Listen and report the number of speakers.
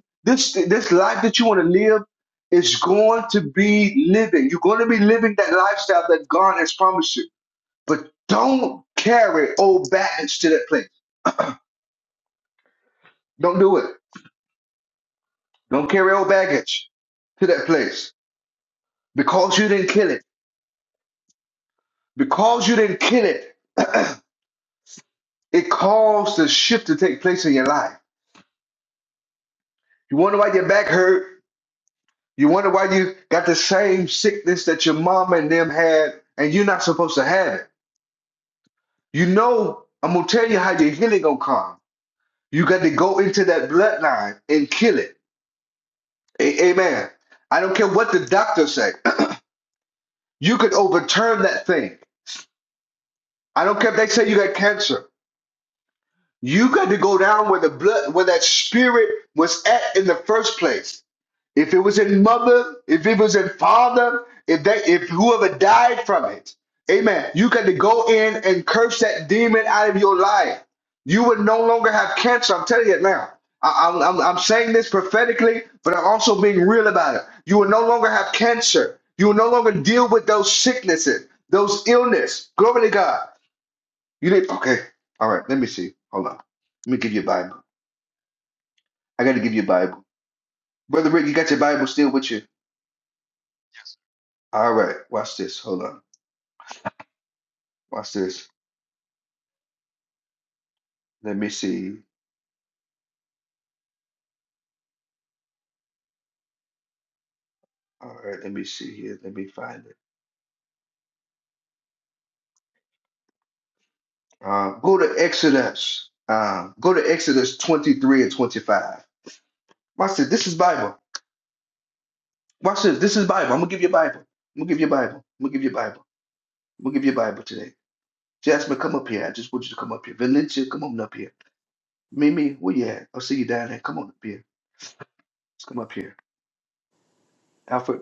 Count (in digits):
1